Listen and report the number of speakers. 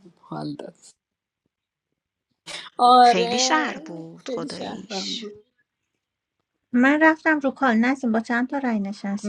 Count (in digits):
3